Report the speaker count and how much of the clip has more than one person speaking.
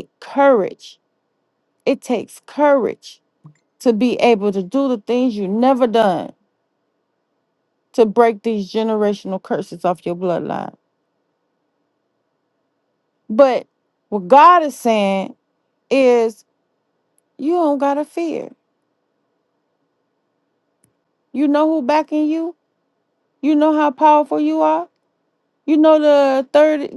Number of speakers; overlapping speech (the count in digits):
1, no overlap